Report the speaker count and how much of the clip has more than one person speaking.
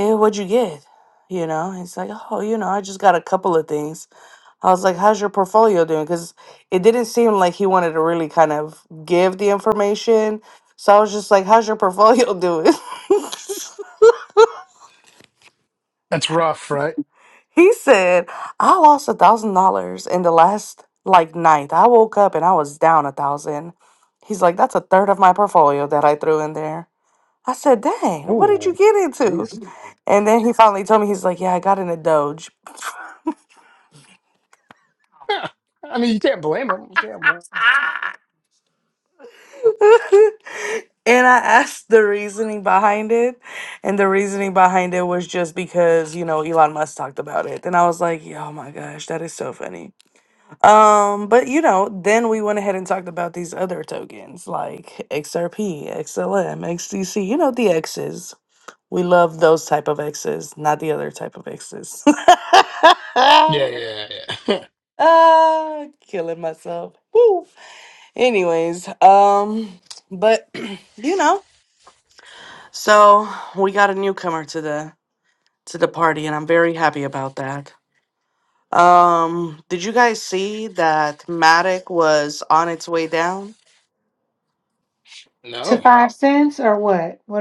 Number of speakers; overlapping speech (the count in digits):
3, about 1%